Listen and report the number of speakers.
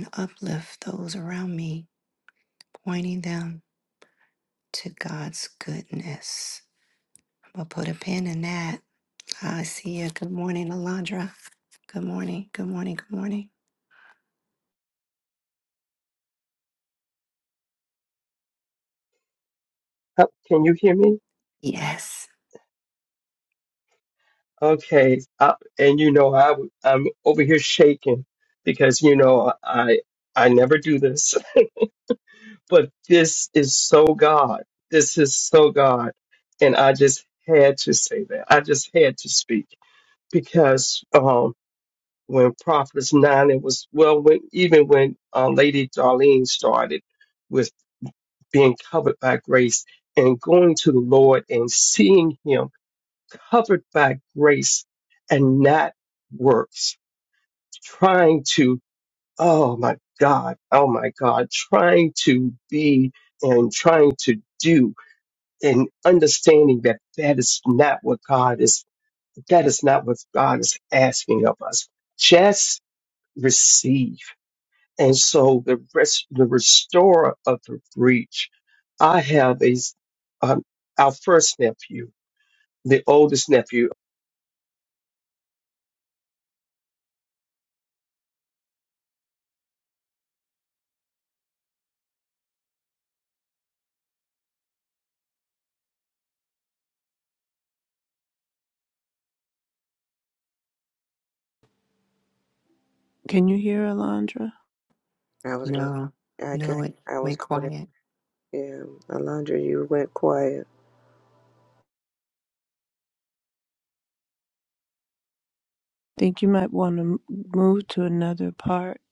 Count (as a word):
four